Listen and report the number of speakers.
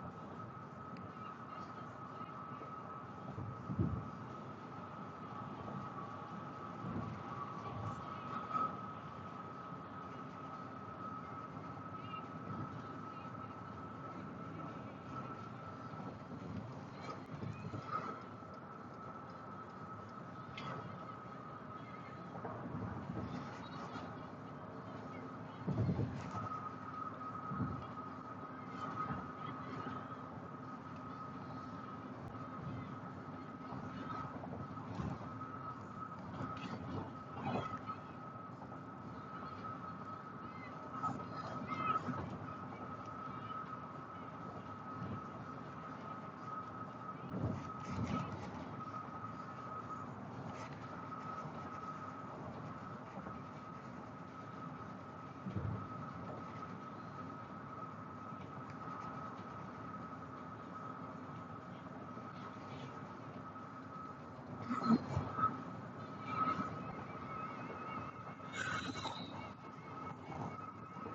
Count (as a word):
zero